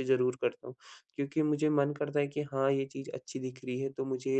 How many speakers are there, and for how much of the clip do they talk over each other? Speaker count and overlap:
one, no overlap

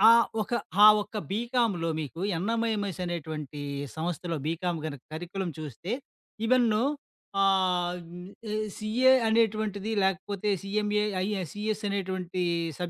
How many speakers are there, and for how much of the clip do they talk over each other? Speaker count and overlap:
one, no overlap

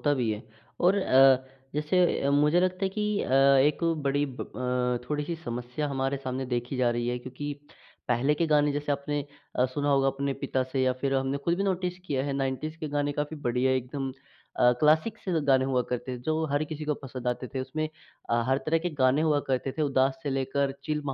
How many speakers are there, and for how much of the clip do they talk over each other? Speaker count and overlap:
one, no overlap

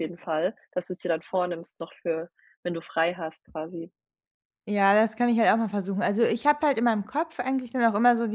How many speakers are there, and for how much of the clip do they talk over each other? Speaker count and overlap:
two, no overlap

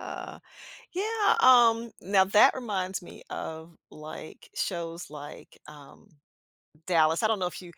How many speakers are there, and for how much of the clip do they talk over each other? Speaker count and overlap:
one, no overlap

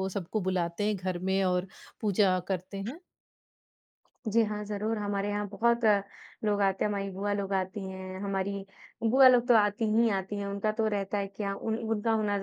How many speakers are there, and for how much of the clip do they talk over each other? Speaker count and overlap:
two, no overlap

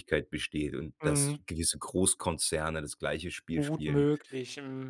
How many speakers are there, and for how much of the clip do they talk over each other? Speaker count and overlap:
two, about 18%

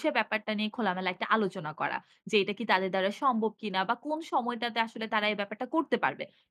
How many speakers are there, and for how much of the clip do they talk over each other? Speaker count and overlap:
one, no overlap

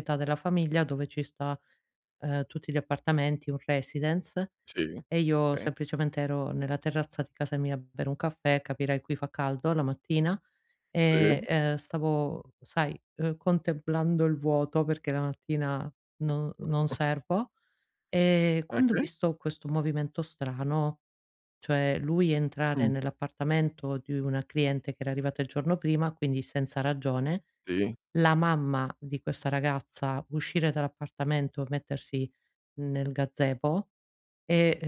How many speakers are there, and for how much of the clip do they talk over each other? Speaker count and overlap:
two, about 3%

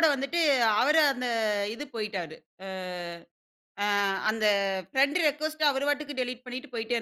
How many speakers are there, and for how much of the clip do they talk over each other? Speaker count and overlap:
one, no overlap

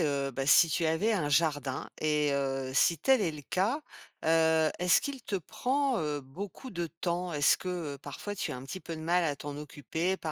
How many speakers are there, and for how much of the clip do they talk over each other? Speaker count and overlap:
one, no overlap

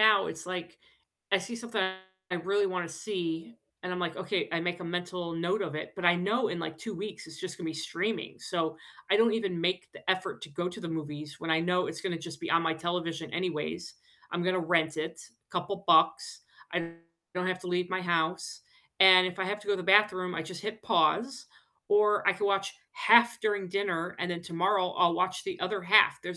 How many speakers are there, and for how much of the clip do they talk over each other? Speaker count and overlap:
one, no overlap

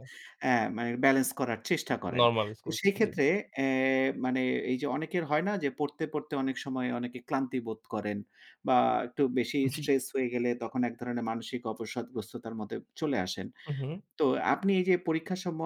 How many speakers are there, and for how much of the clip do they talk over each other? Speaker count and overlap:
two, about 5%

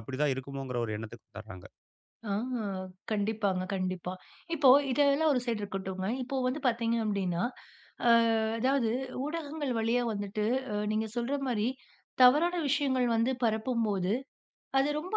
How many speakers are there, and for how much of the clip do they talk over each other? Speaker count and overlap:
two, no overlap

